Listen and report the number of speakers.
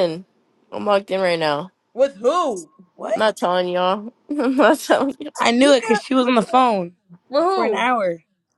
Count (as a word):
three